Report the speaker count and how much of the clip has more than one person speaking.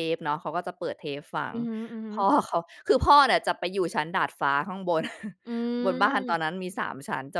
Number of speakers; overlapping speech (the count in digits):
2, about 10%